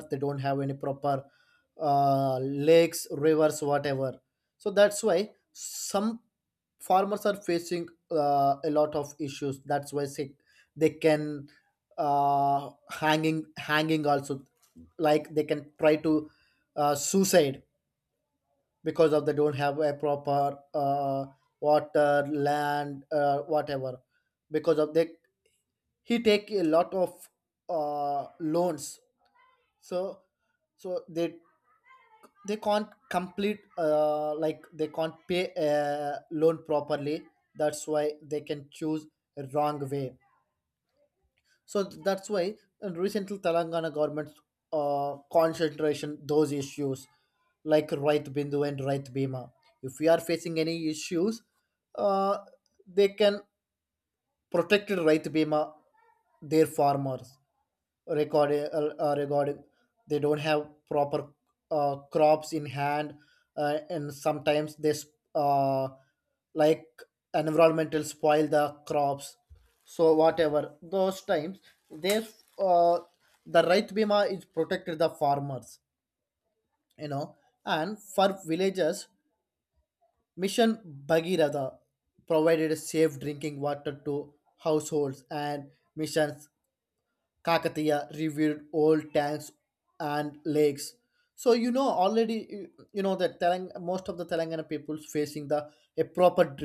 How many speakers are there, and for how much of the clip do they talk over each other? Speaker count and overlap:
one, no overlap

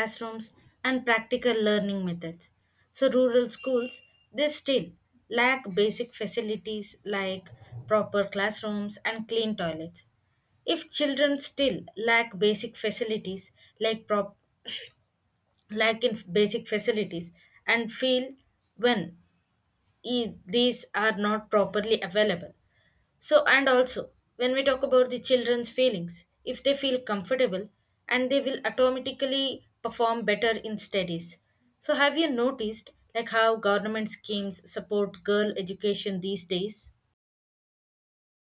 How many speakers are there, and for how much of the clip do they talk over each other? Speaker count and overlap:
one, no overlap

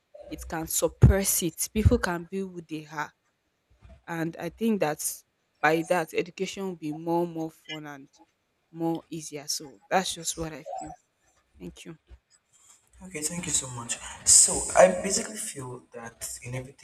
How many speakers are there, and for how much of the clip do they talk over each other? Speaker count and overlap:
two, no overlap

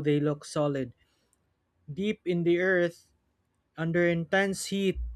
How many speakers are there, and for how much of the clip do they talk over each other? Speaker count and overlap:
one, no overlap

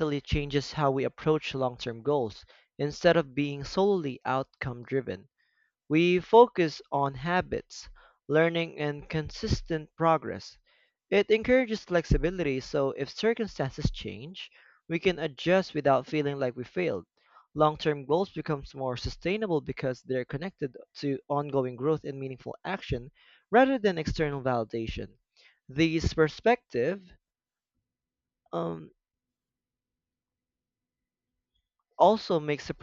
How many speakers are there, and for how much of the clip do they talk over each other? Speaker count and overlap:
one, no overlap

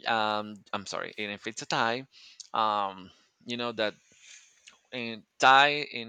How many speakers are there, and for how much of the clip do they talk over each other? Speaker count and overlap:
one, no overlap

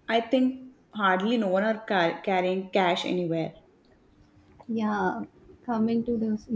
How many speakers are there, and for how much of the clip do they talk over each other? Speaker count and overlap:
two, no overlap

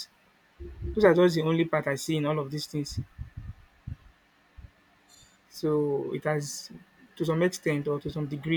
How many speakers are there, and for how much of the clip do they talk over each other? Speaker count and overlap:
one, no overlap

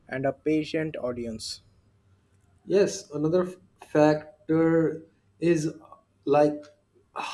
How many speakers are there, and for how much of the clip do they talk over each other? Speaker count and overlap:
two, no overlap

